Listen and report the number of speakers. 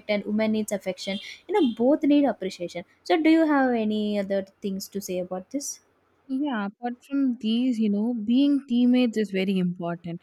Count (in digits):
2